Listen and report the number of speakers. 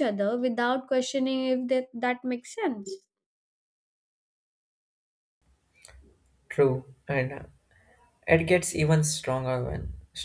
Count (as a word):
two